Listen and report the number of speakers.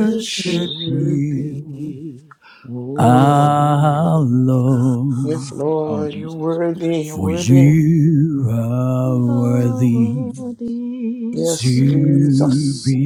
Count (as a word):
three